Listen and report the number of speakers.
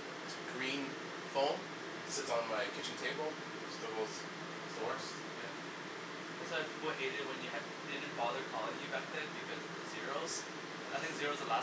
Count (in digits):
2